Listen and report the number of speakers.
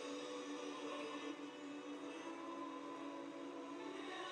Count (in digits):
0